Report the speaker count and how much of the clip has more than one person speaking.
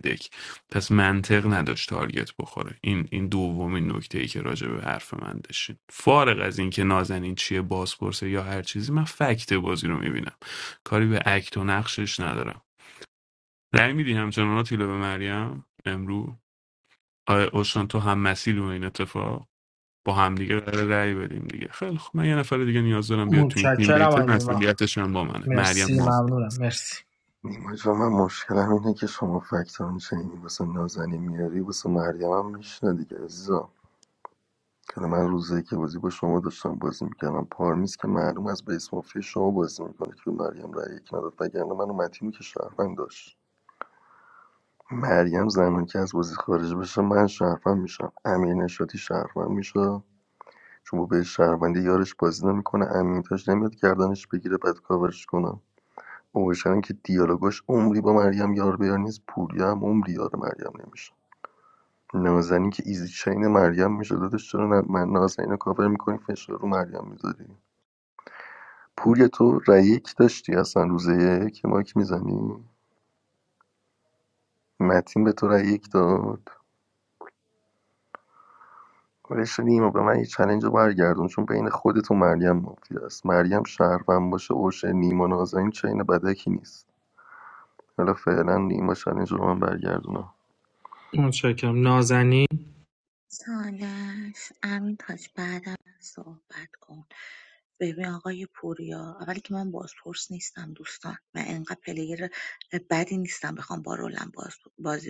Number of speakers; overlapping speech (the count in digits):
4, about 2%